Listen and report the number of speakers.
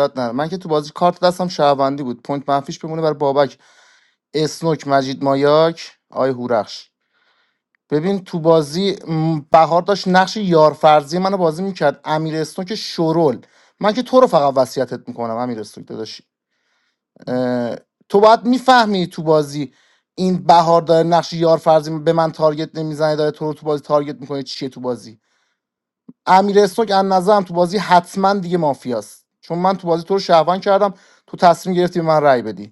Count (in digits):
1